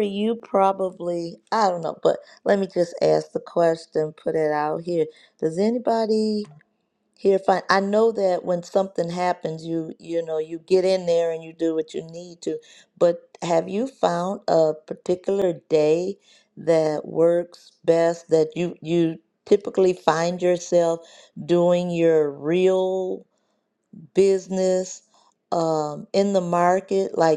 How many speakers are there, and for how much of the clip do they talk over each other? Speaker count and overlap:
one, no overlap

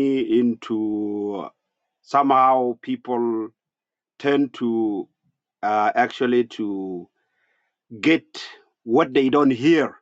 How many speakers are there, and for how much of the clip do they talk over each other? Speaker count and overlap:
one, no overlap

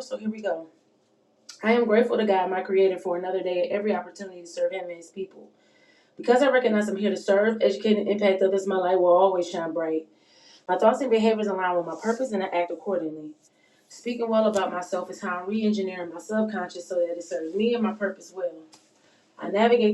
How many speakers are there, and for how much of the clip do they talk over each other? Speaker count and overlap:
one, no overlap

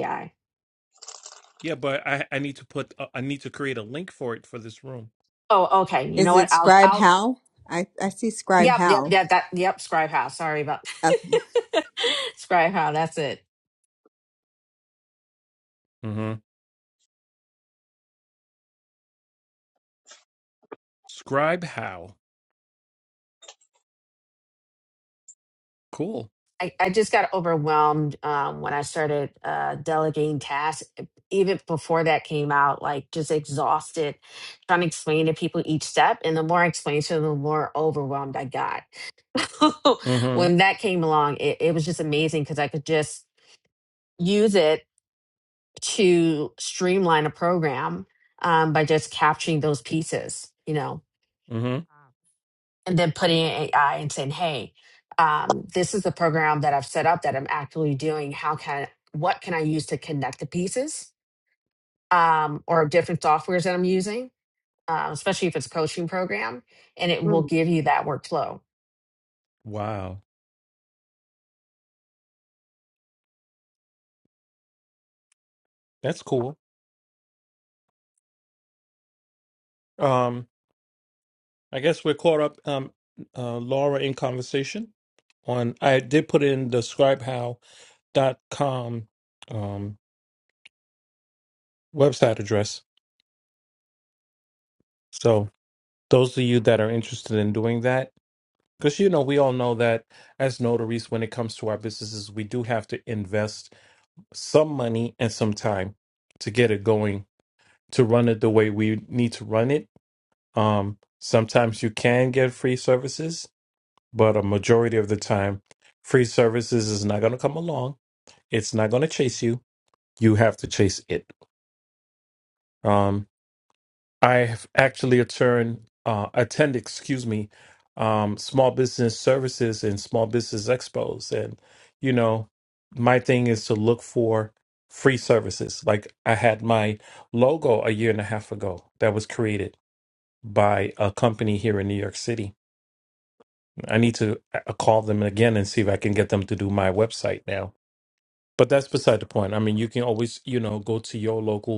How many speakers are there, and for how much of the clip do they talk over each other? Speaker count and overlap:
three, about 1%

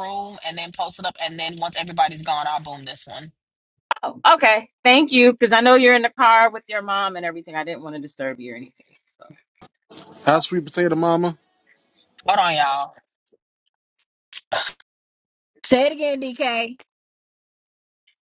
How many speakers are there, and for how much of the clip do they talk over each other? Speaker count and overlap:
three, no overlap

